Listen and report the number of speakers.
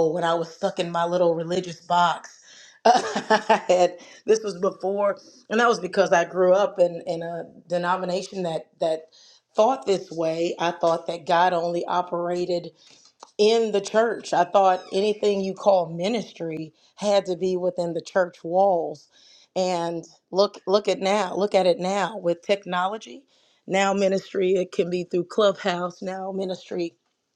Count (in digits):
1